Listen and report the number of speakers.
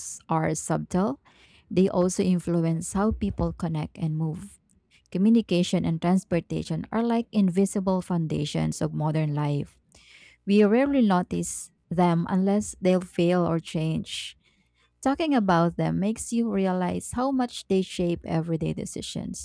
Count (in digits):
1